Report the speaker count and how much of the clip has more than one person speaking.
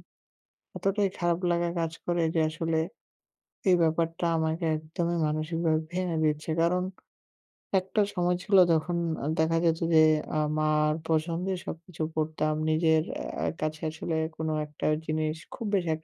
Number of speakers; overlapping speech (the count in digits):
1, no overlap